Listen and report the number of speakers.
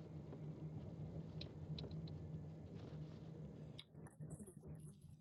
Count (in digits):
0